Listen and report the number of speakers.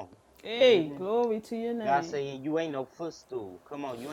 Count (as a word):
two